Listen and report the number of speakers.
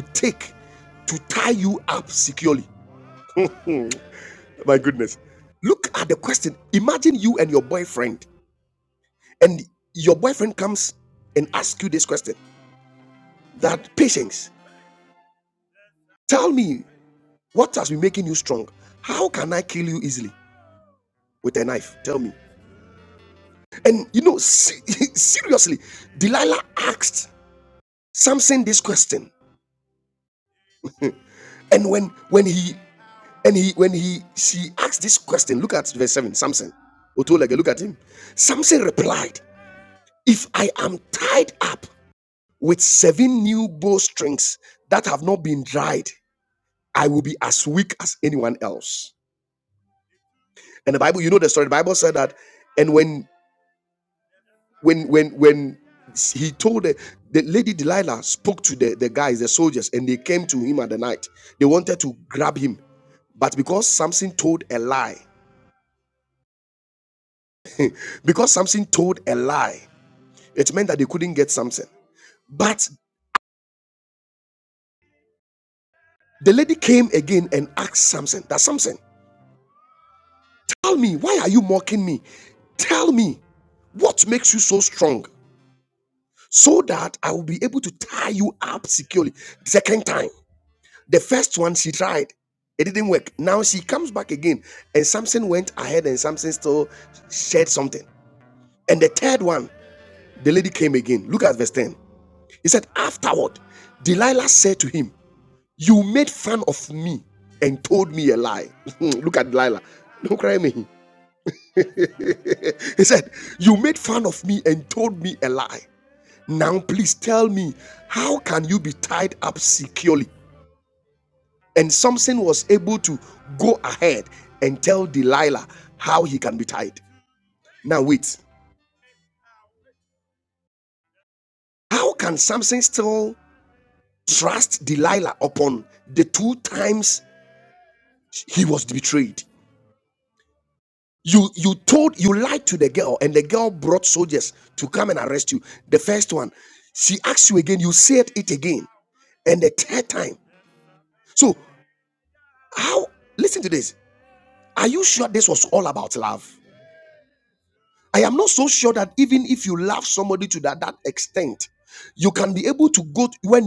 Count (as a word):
one